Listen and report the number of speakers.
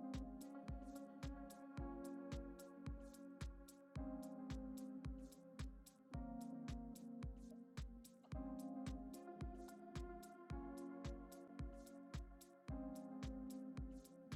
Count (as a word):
zero